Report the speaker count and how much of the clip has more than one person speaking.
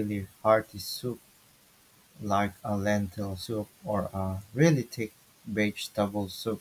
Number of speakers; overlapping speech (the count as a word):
one, no overlap